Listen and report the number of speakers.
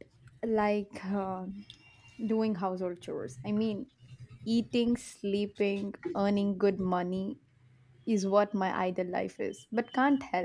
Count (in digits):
1